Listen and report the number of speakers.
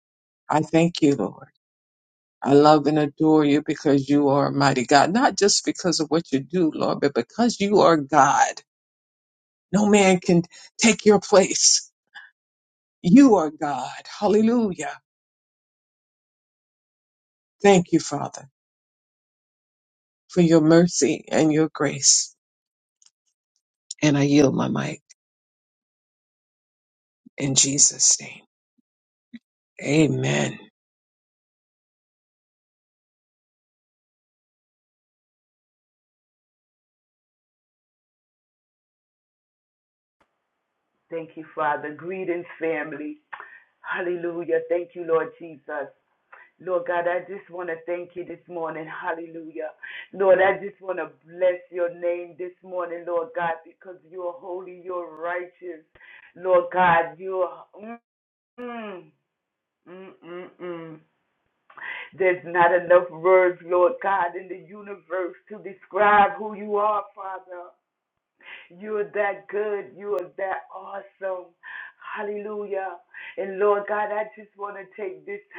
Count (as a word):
two